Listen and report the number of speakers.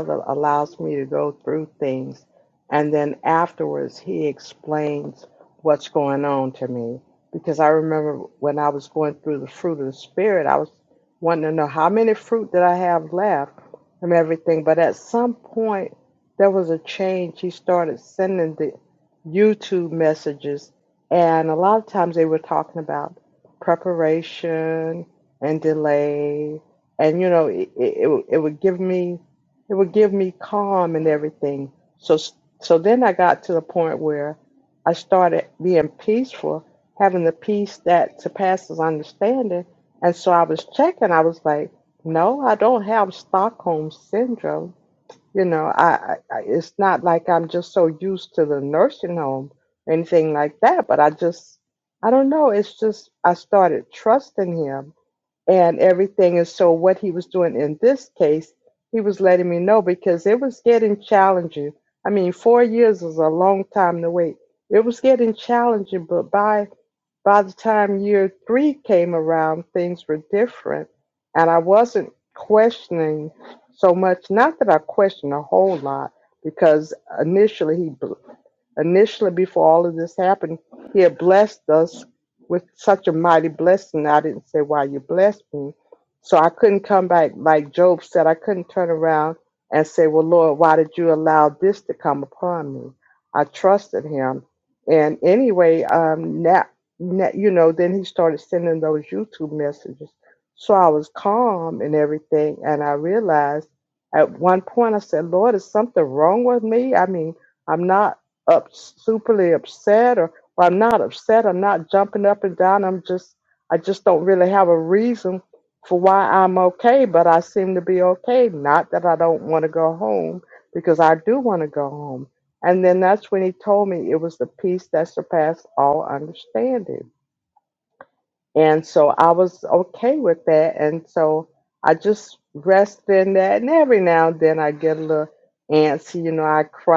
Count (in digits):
1